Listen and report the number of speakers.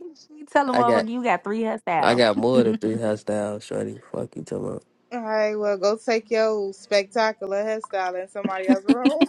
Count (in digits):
3